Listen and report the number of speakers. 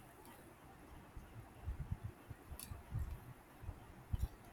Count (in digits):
0